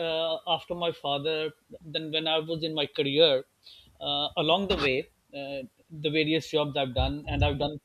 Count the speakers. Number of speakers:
1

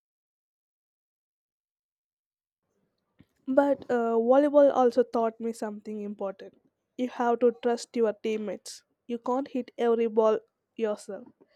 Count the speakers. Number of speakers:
1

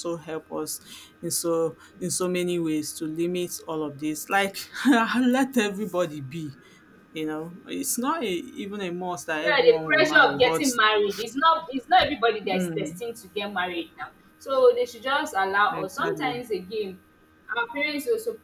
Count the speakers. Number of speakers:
2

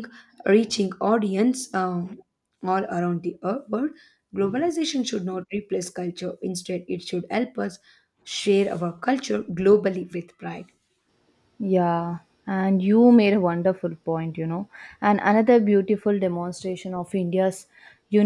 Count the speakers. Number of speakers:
2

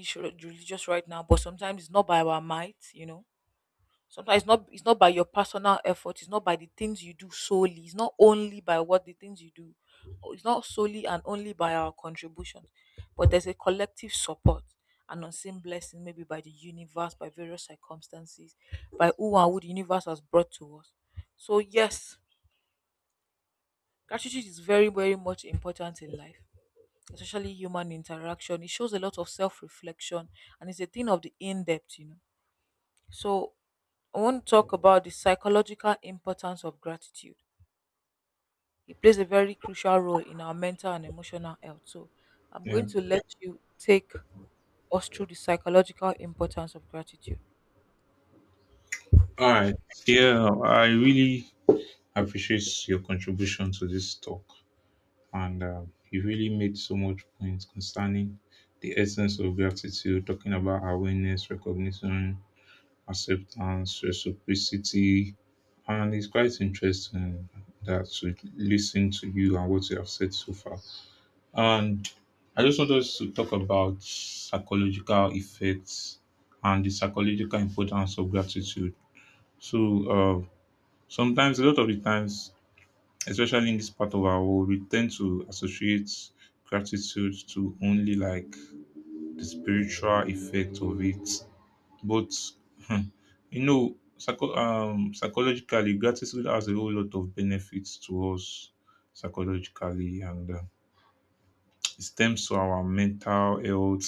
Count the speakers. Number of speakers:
2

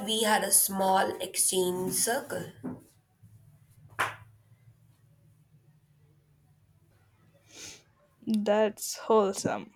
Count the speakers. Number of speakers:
2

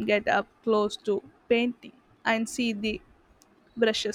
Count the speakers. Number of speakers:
1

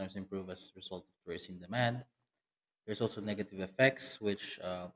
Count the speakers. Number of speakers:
1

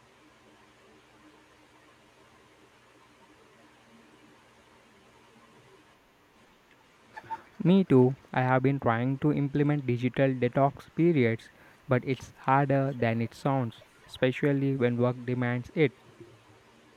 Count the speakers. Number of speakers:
1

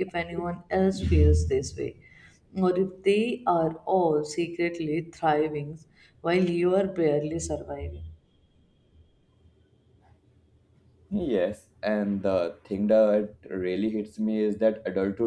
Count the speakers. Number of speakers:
2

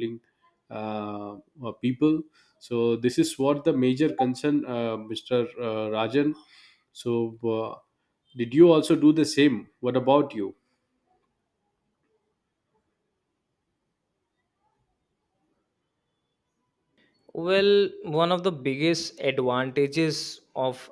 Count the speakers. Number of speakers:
2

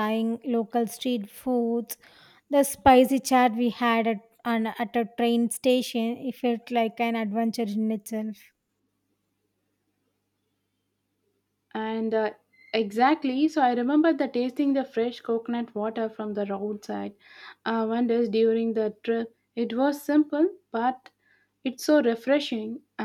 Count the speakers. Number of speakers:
2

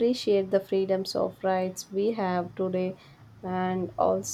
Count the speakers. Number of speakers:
1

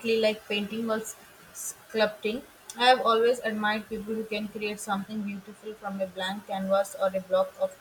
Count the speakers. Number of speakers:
1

